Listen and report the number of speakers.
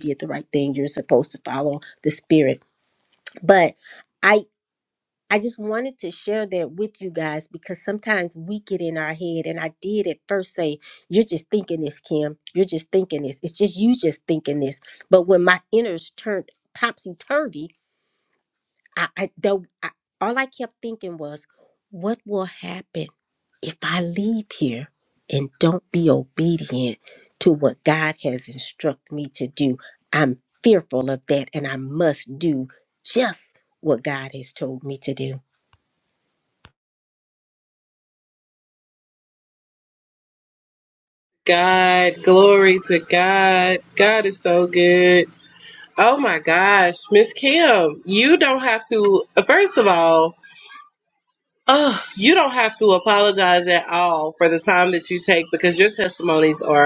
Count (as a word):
two